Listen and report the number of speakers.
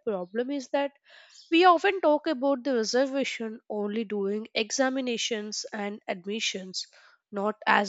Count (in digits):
1